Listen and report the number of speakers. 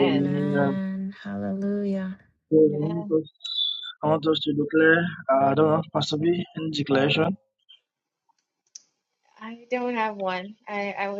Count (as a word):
three